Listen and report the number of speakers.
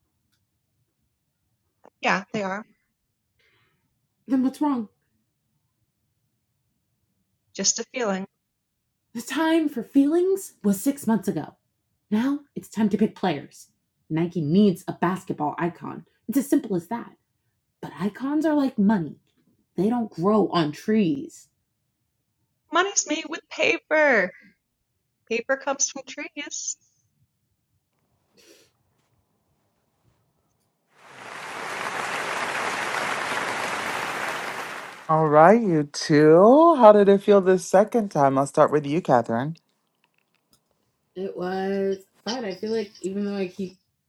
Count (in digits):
3